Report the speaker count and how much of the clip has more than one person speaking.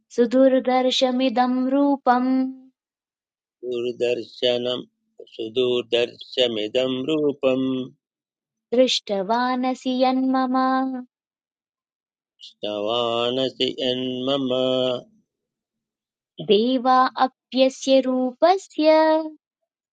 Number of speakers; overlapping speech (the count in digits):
2, no overlap